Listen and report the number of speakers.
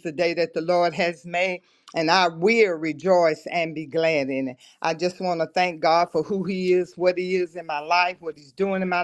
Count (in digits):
1